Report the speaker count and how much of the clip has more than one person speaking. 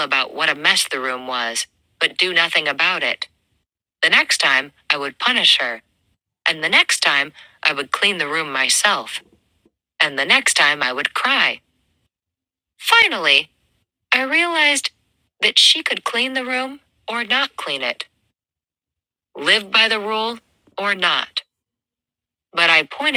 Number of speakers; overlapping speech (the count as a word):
one, no overlap